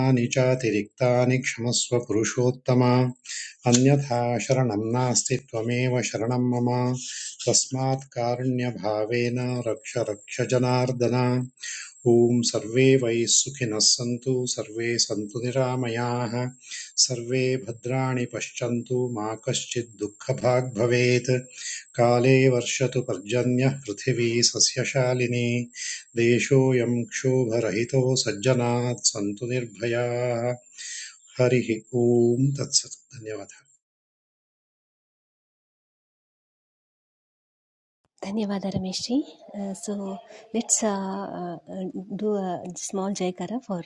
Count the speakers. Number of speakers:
two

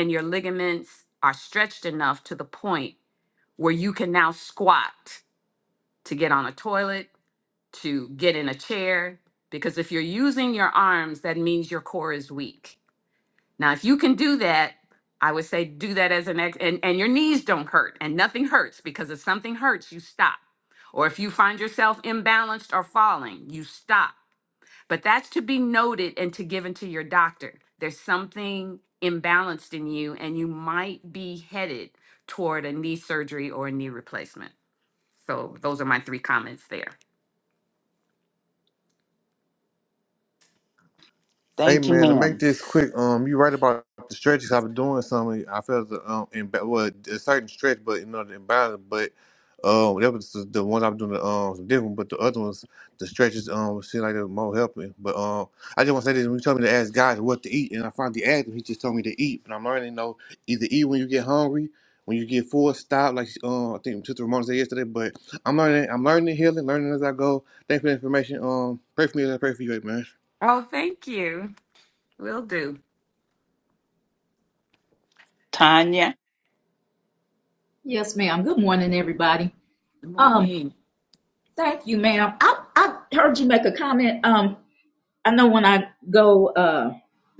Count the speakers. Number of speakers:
four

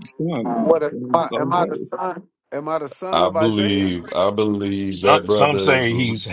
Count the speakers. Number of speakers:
four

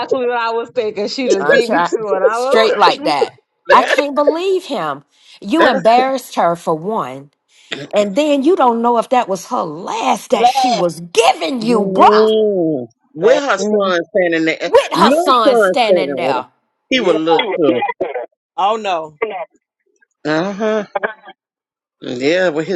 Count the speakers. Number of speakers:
four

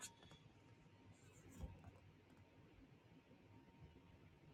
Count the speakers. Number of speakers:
zero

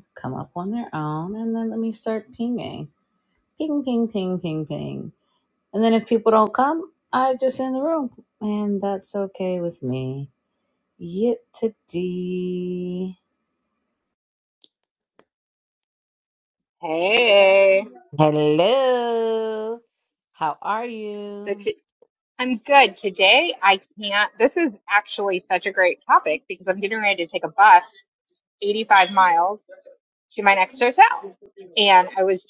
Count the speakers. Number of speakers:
two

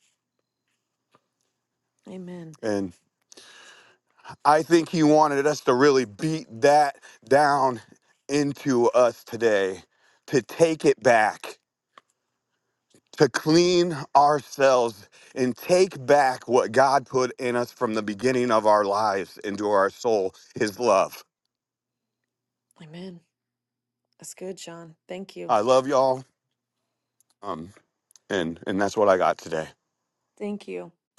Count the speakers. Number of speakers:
two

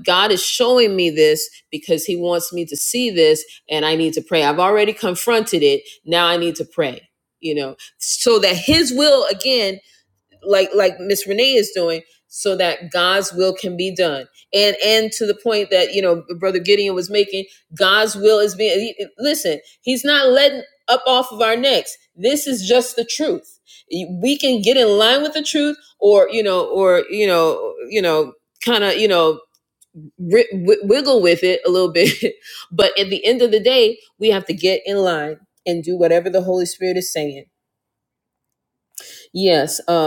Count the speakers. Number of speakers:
one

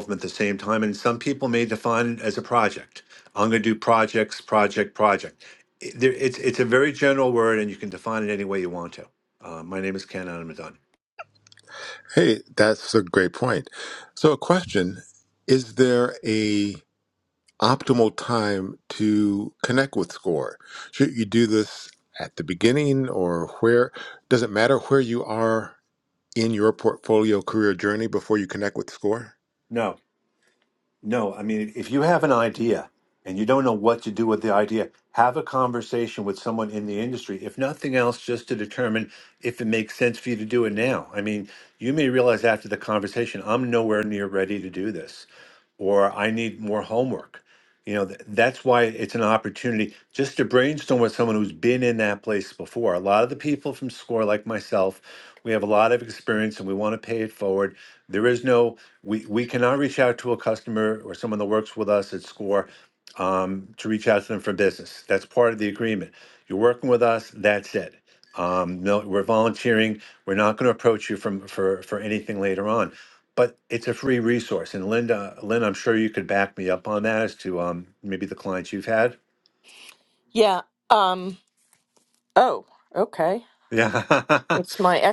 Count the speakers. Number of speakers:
three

